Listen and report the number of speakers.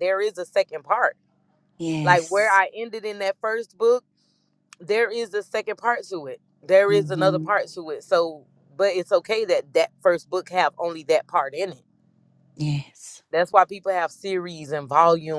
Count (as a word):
two